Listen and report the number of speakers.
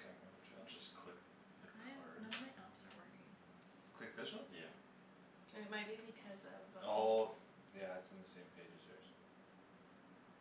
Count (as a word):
four